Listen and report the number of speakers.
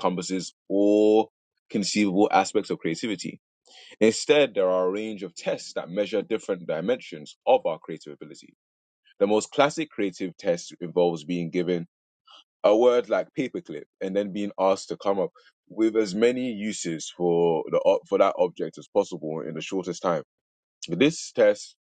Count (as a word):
one